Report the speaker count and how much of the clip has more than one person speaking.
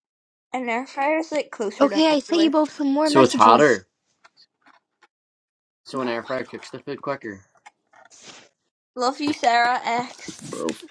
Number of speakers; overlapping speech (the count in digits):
3, about 16%